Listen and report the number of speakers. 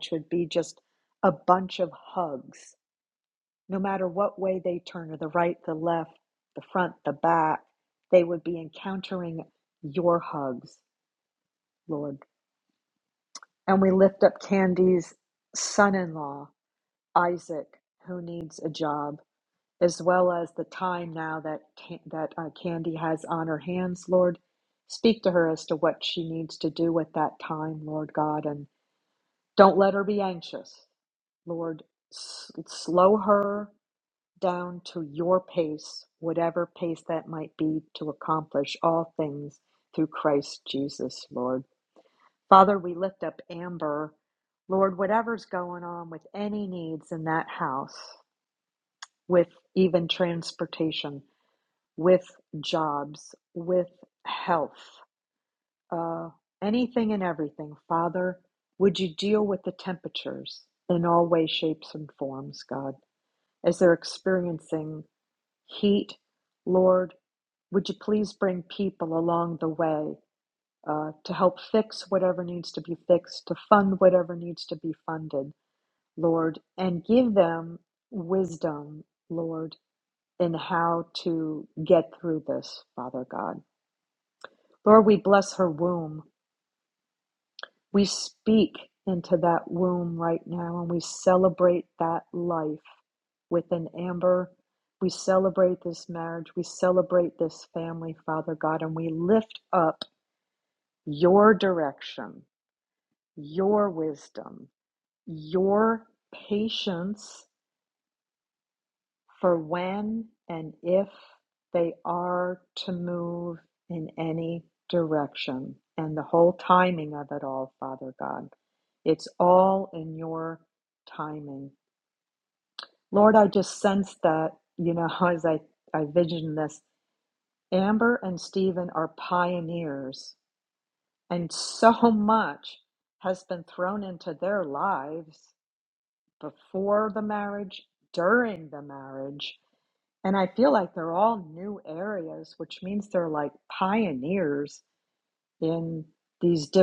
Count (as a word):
one